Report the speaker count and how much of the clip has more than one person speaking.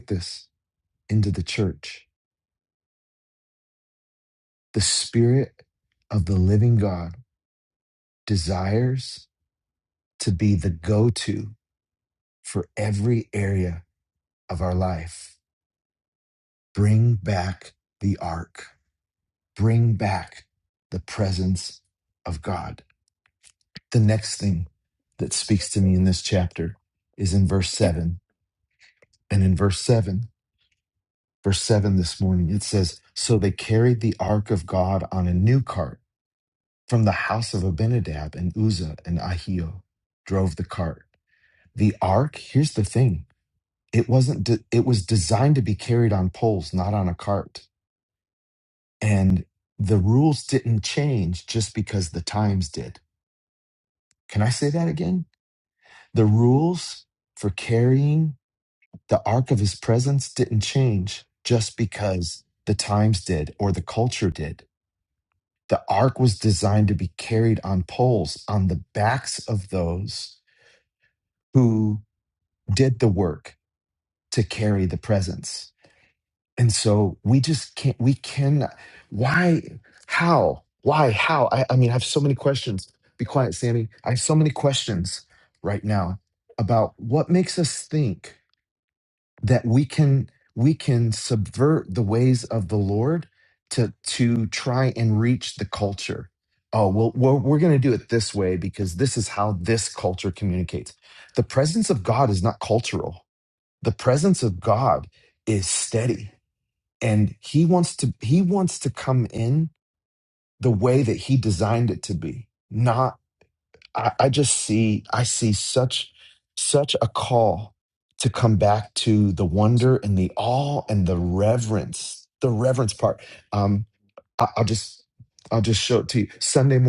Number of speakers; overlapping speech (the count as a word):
one, no overlap